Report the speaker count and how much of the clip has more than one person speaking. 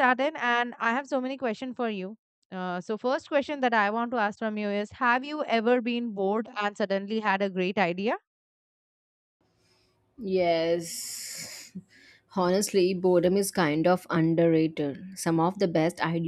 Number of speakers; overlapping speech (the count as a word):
two, no overlap